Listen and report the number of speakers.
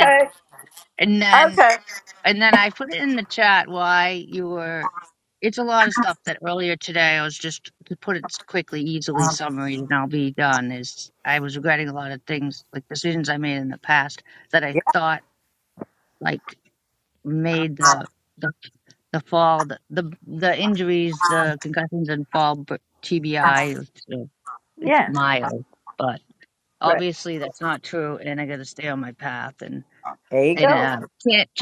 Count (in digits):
2